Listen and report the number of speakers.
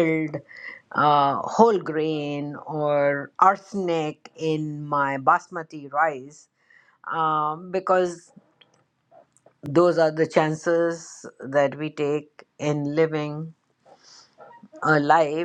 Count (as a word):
one